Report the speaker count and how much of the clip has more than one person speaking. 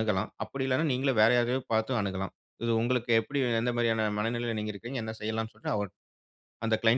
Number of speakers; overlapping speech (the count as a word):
one, no overlap